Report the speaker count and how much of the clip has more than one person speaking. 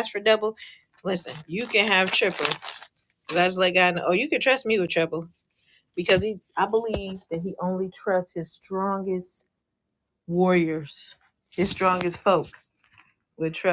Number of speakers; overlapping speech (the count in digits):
1, no overlap